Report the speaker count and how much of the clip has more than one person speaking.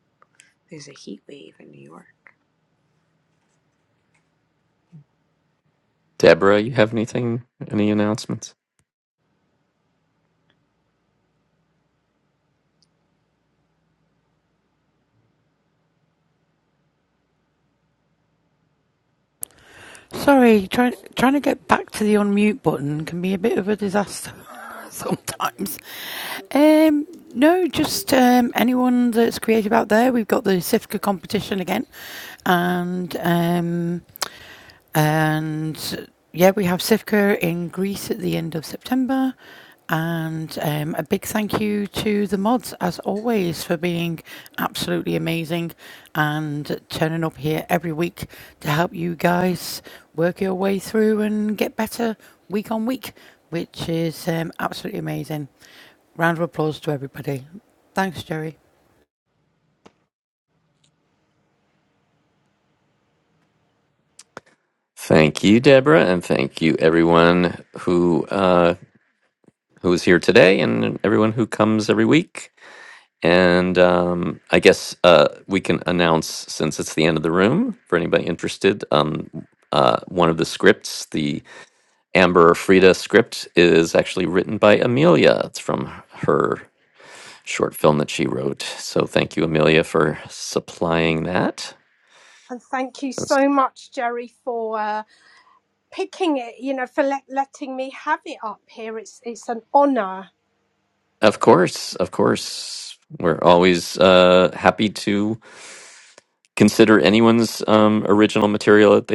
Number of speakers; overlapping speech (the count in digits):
4, under 1%